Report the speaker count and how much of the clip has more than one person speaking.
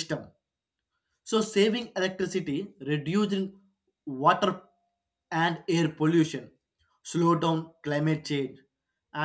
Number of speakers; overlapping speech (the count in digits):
1, no overlap